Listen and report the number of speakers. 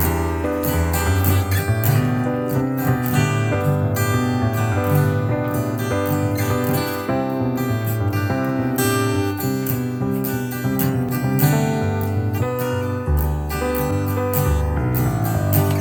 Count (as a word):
zero